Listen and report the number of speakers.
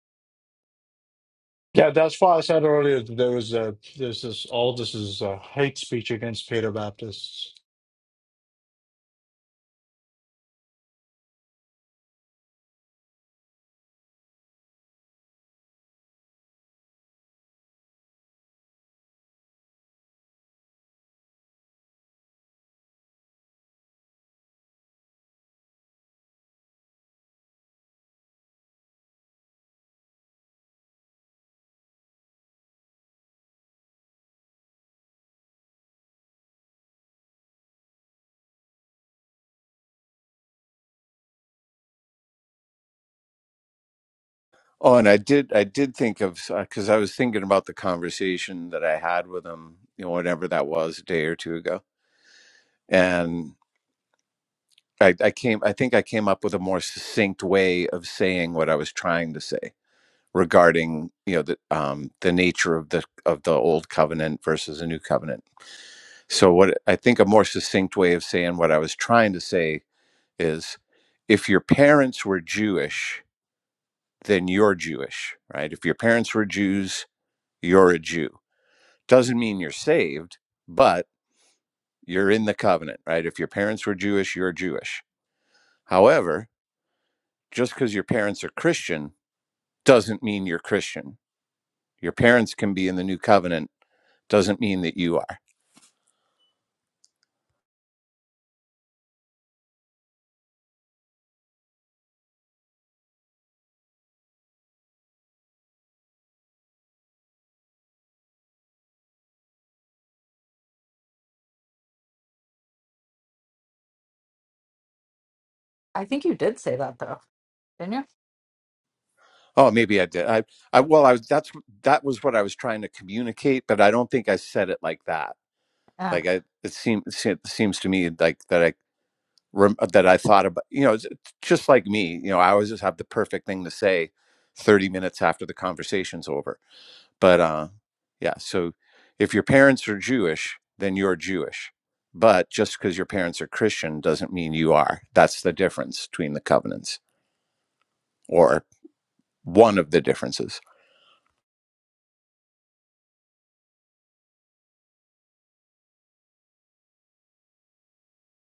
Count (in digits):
3